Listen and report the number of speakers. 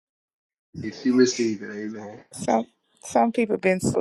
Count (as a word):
two